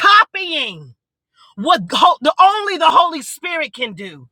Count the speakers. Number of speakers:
one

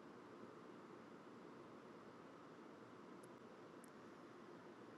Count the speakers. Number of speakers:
zero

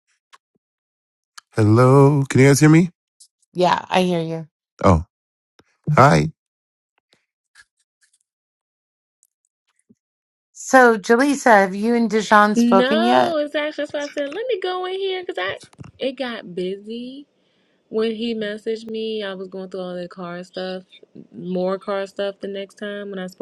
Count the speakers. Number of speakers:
three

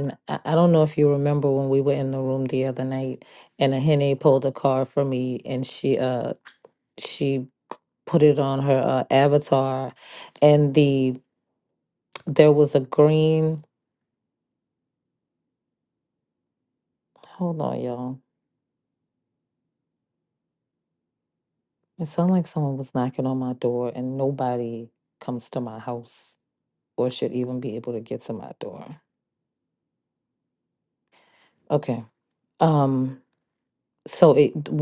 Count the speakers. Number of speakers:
one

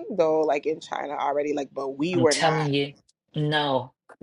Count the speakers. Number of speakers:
two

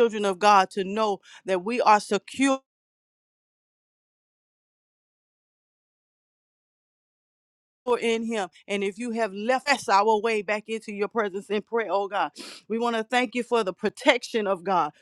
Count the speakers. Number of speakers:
one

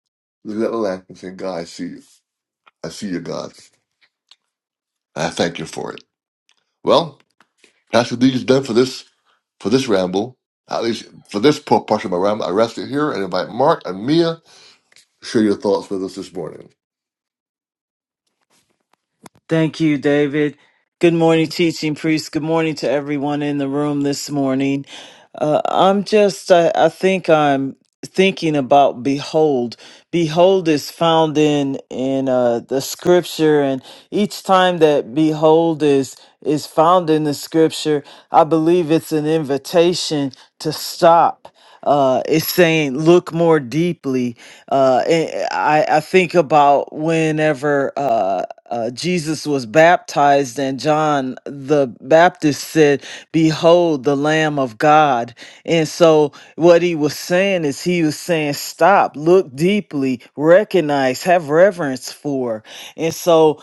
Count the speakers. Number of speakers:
two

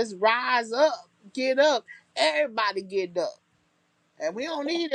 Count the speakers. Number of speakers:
one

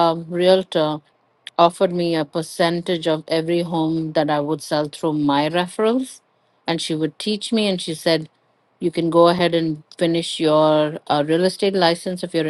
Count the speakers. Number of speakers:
one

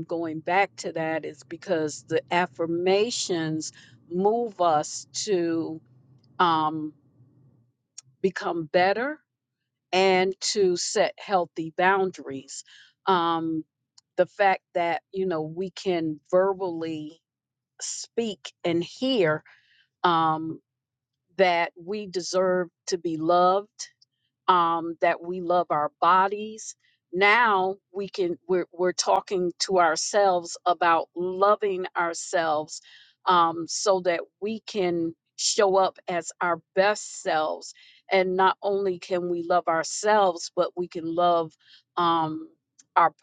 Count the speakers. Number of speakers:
one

